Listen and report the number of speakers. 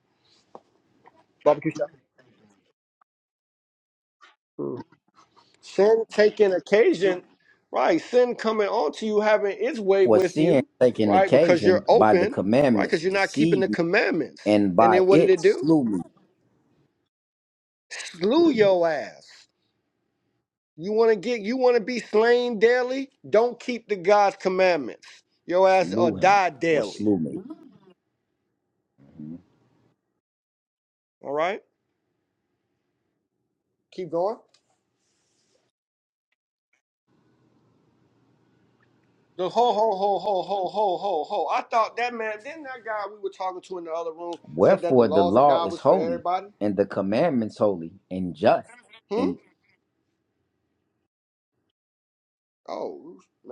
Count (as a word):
two